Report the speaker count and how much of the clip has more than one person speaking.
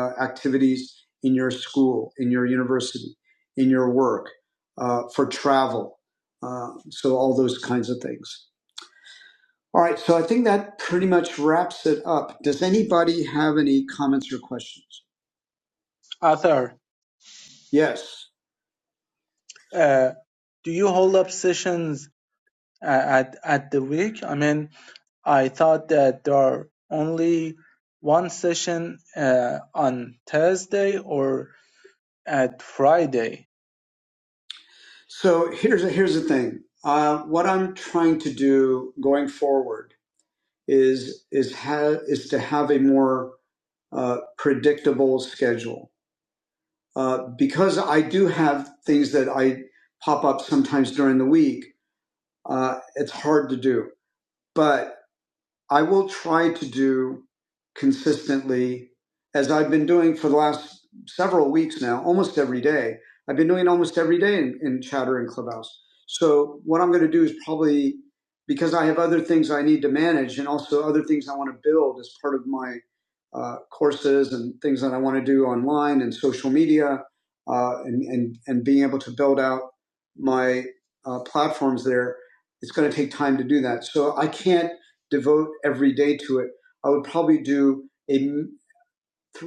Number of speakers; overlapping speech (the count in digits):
2, no overlap